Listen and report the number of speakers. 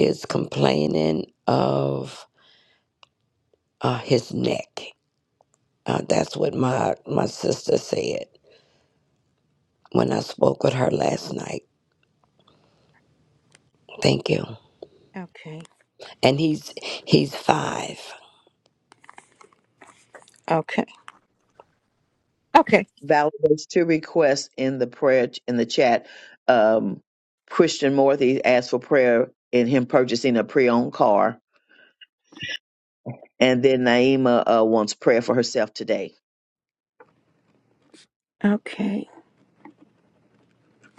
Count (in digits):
3